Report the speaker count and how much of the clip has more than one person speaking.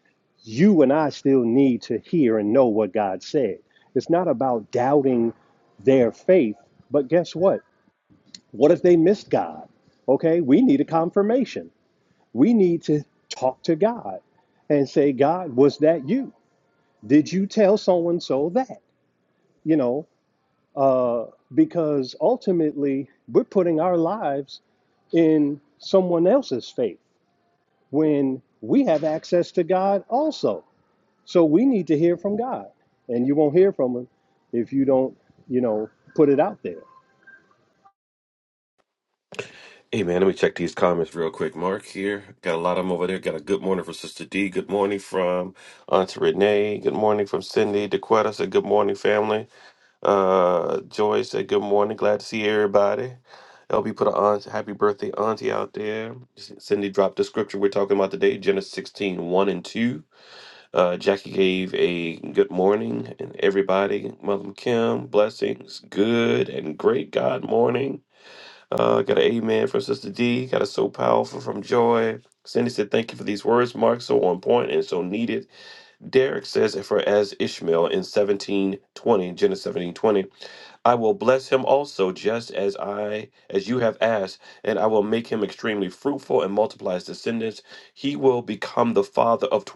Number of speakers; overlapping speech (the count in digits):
2, no overlap